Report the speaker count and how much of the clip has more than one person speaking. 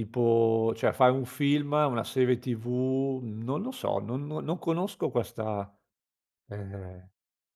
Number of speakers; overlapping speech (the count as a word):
one, no overlap